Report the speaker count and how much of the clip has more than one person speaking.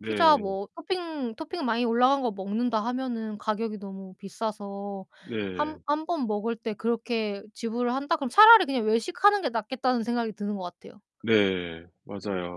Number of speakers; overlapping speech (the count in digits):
2, about 6%